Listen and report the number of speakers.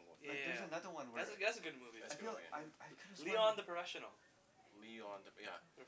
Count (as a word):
three